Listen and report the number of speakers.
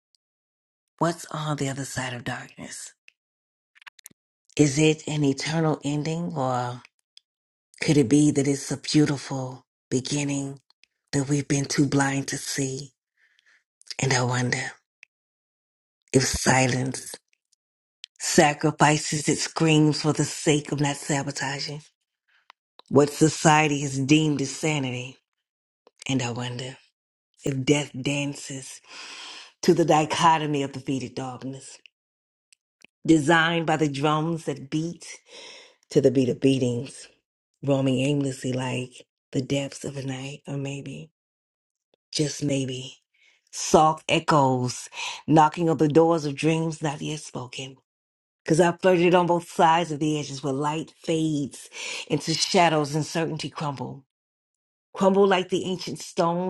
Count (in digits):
1